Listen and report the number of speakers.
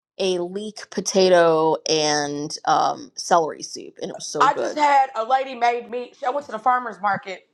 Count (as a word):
two